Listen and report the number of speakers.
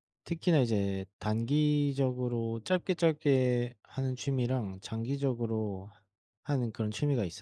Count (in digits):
1